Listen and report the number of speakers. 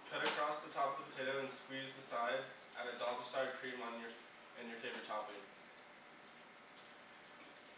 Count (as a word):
one